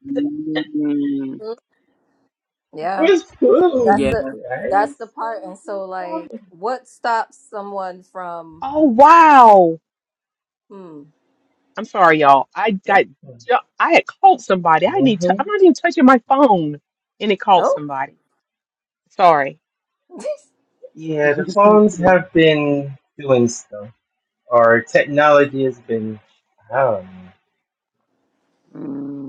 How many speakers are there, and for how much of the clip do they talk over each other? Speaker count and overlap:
4, about 6%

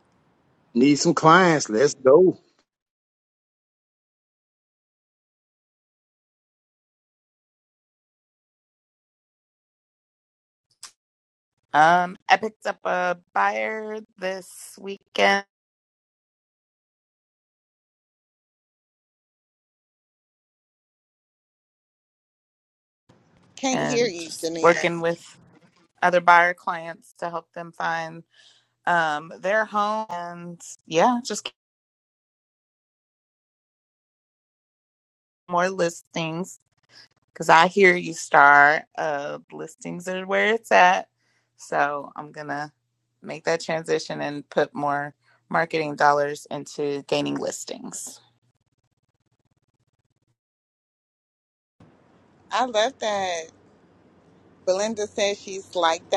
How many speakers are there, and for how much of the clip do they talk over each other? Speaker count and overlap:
3, about 2%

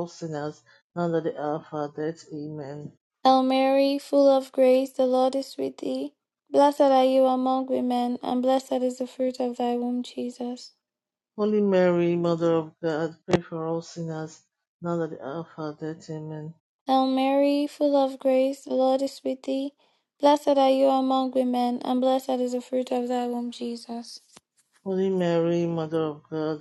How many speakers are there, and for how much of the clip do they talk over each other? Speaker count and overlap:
2, no overlap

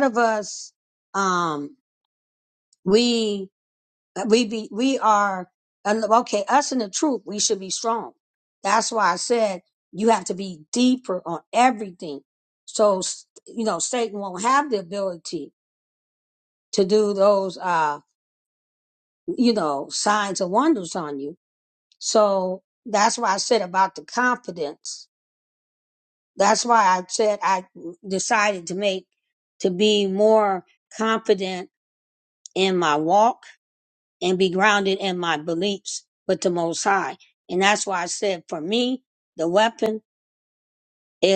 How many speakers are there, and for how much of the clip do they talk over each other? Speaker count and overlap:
1, no overlap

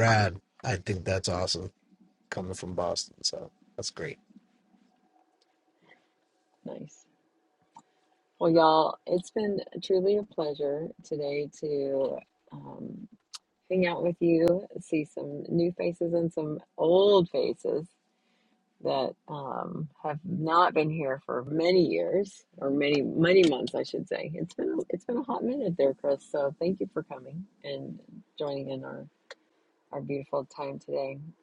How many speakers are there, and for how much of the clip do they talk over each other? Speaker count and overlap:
2, no overlap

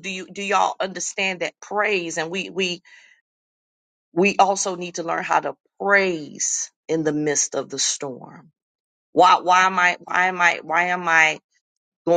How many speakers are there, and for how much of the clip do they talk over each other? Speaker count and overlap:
1, no overlap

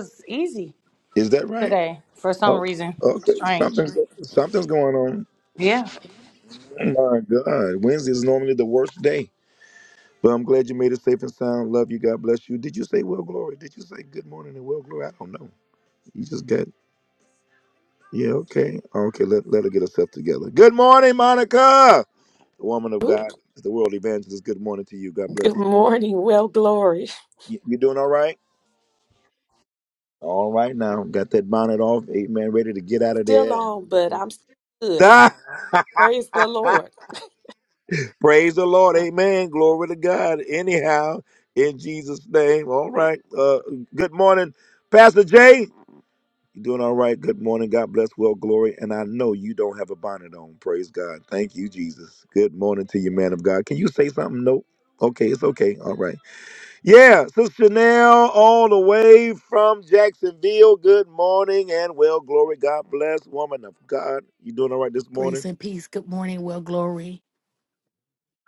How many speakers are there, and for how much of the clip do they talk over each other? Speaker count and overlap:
4, about 3%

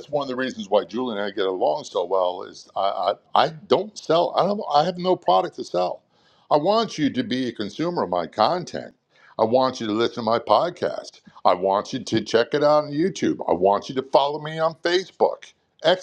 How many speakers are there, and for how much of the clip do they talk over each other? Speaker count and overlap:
1, no overlap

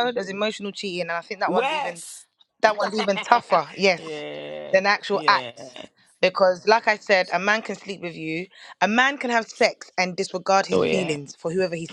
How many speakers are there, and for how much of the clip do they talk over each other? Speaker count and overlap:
2, about 12%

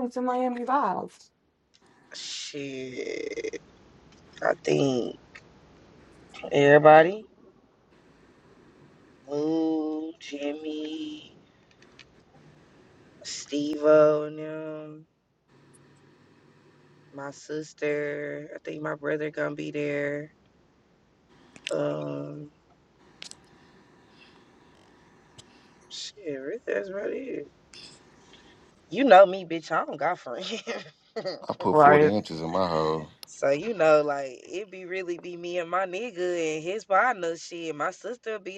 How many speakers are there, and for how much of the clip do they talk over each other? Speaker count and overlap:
3, about 1%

